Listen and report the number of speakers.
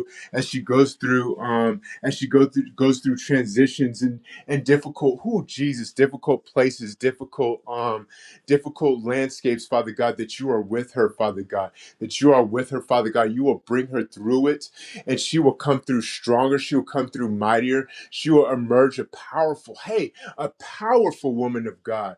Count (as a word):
one